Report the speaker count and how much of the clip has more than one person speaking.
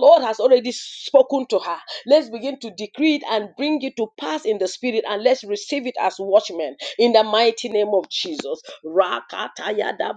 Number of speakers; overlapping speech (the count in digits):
1, no overlap